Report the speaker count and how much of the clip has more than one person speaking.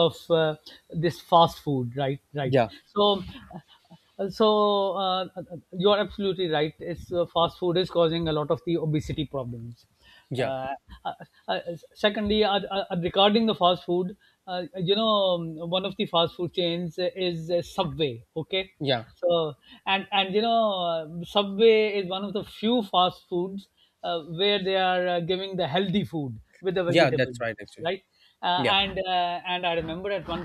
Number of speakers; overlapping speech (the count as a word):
two, about 3%